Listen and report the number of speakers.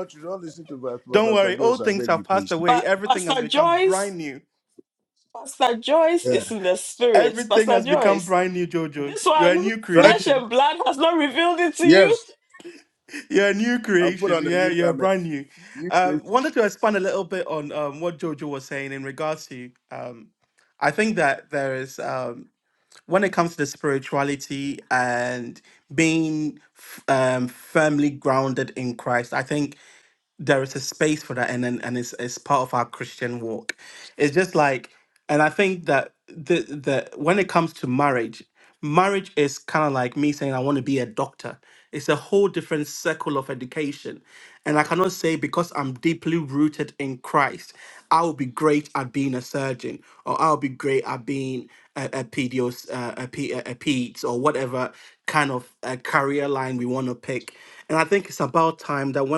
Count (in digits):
3